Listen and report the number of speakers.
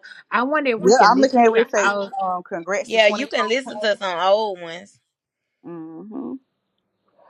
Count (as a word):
three